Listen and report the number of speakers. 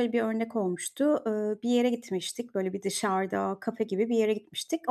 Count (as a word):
one